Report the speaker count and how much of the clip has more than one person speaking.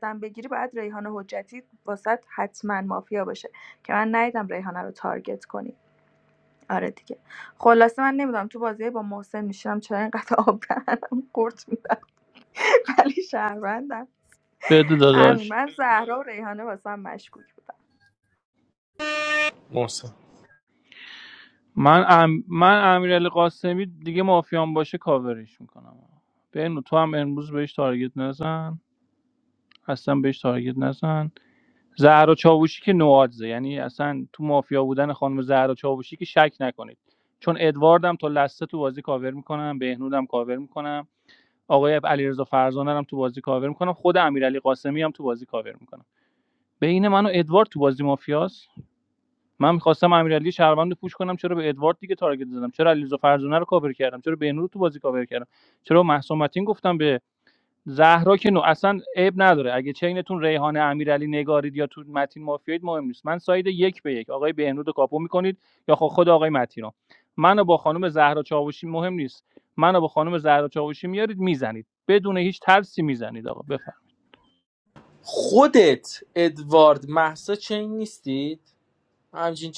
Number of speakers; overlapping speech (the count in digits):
3, under 1%